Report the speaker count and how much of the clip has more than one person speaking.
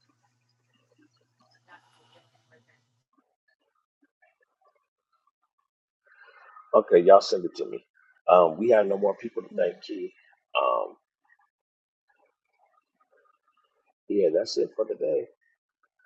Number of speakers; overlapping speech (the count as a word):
one, no overlap